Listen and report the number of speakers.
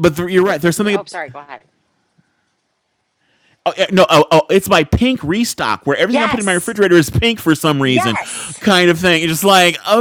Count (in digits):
2